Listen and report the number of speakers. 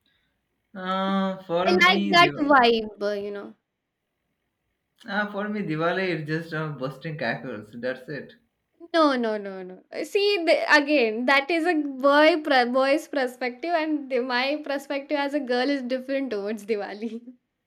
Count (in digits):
2